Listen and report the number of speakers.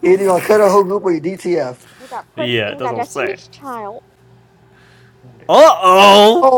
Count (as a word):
three